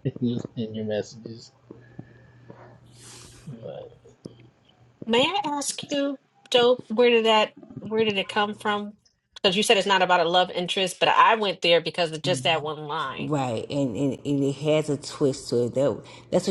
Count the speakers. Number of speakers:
3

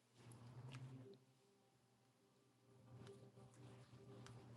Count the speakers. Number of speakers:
0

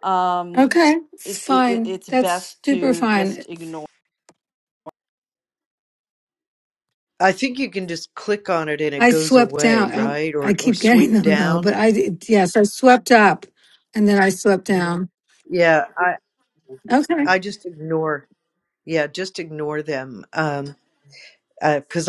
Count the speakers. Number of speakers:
3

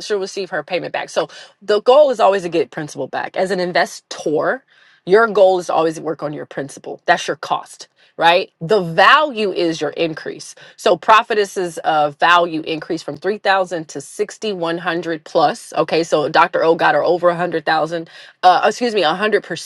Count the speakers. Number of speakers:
1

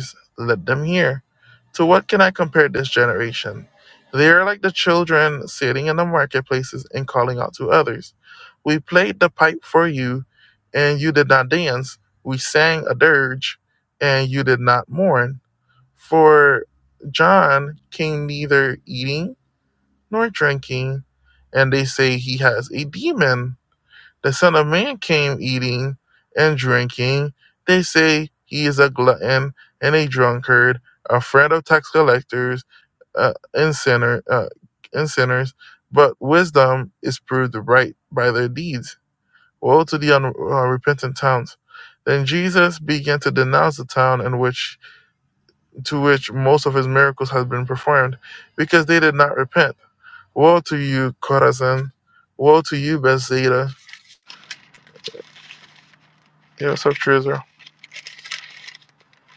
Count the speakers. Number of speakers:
1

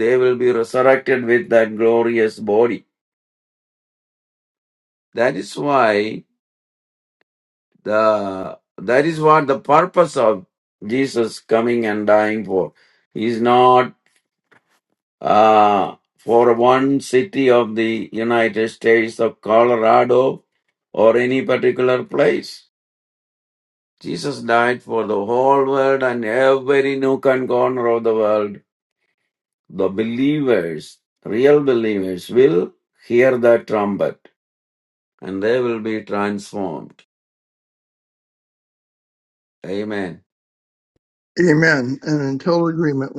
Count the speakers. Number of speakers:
2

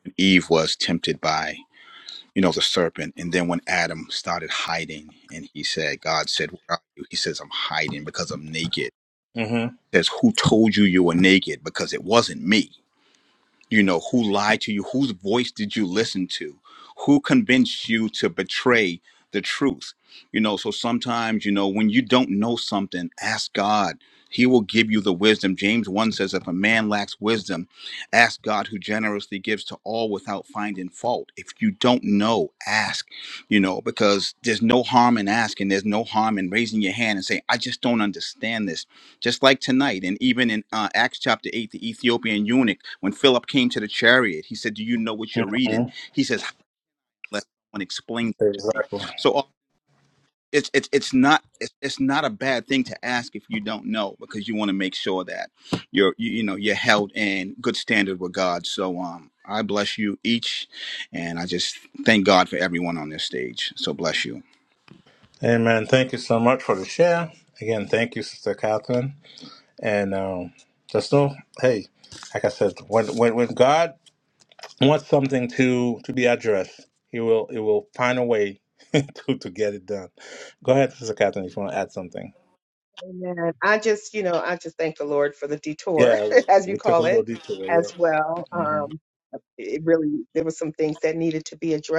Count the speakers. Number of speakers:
3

